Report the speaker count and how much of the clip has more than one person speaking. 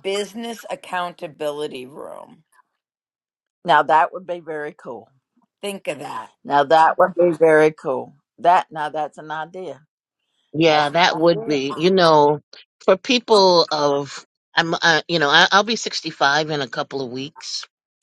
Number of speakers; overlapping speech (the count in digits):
3, about 5%